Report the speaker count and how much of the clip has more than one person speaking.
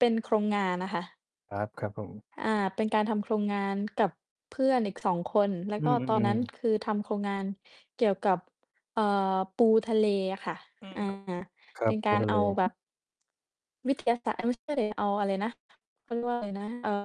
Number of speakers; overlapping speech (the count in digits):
2, about 7%